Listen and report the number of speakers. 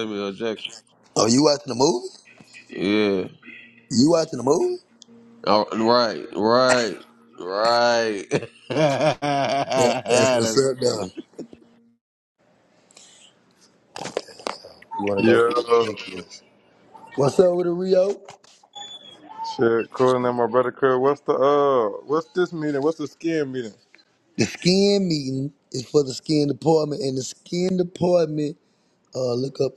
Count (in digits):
3